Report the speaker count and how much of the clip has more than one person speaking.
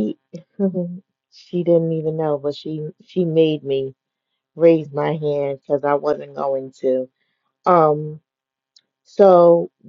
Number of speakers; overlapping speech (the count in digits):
1, no overlap